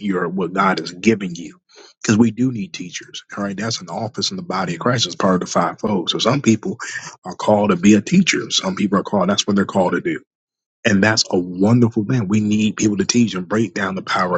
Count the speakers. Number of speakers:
1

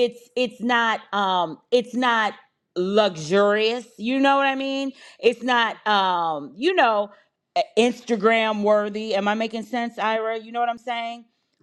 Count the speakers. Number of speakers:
1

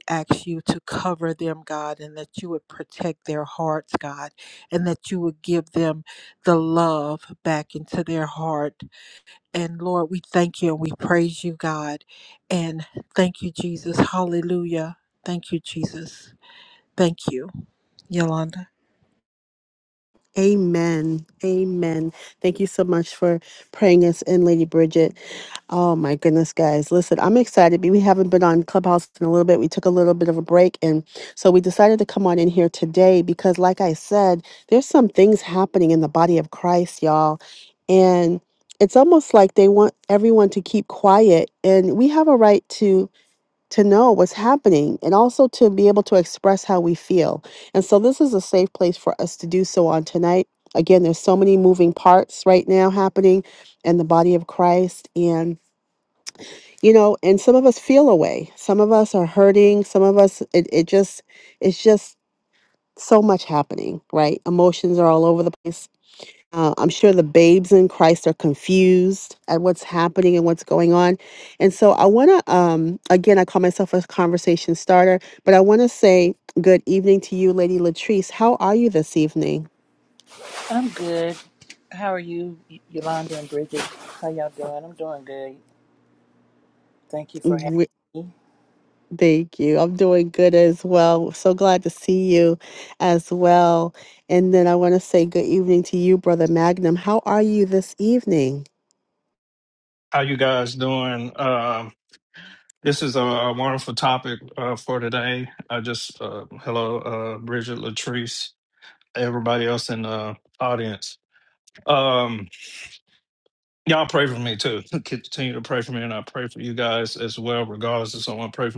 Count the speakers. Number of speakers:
4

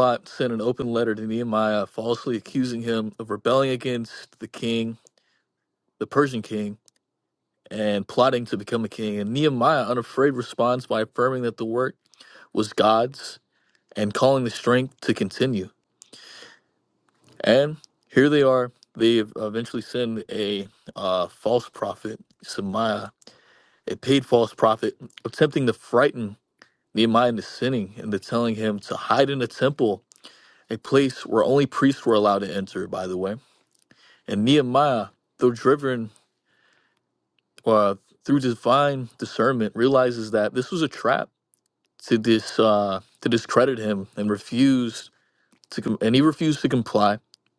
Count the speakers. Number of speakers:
1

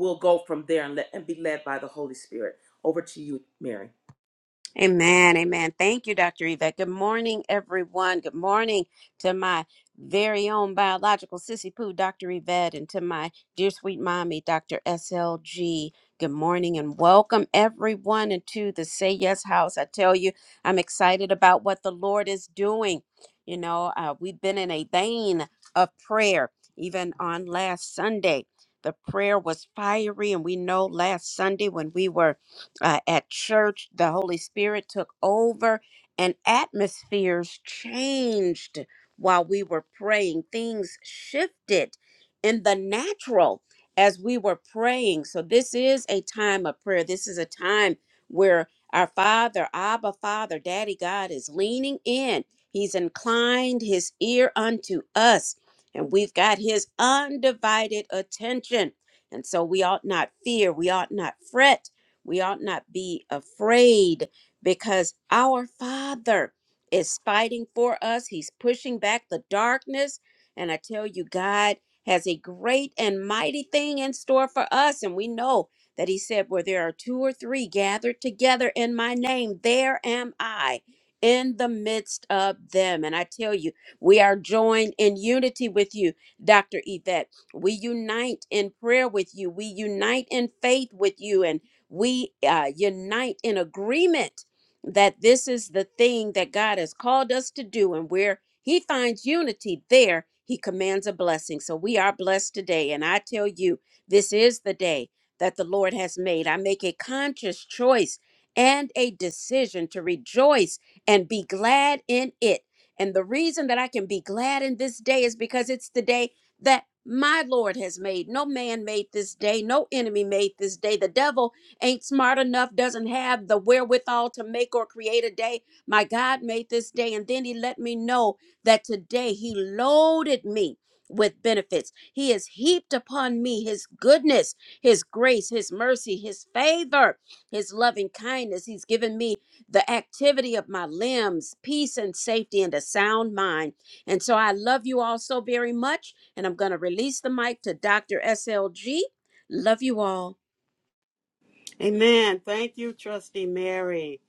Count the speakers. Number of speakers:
3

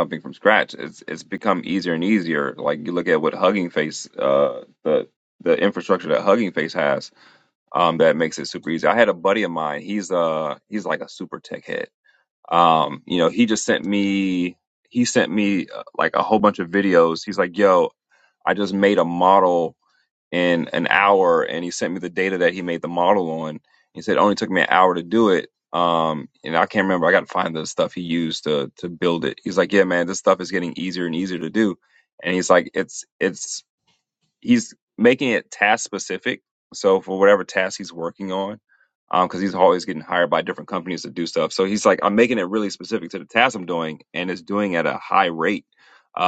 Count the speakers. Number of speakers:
1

